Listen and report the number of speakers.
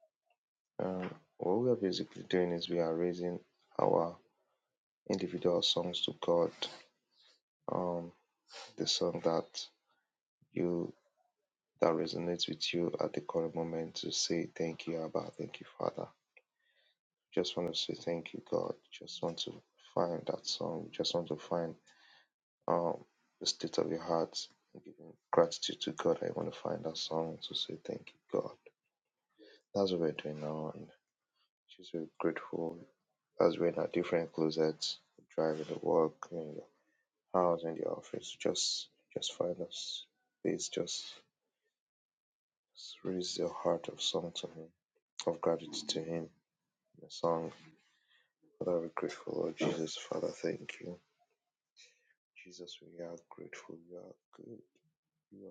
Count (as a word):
one